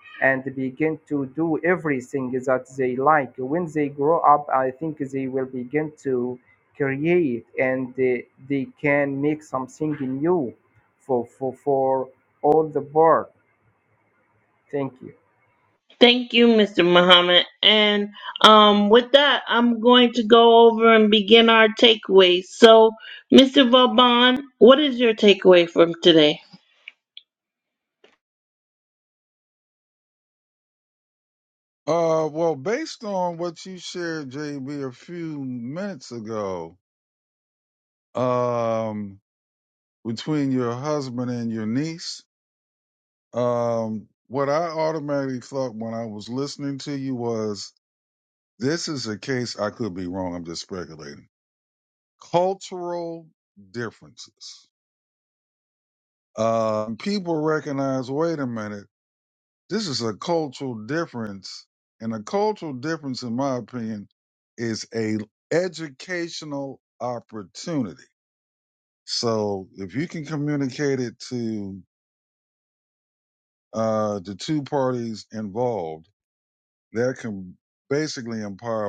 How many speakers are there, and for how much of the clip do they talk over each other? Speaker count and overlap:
3, no overlap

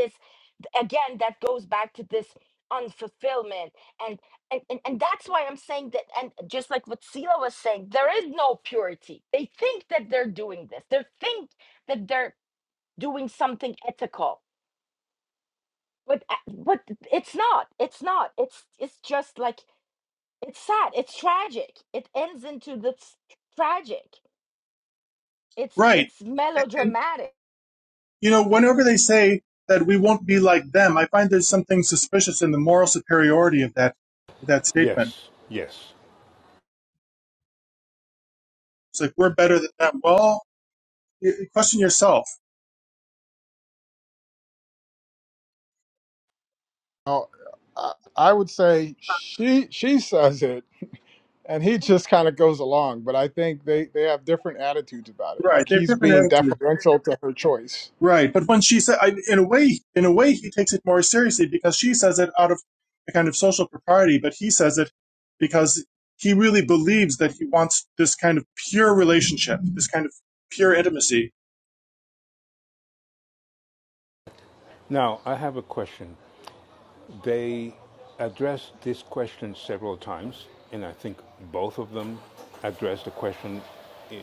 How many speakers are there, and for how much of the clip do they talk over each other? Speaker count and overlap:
4, about 2%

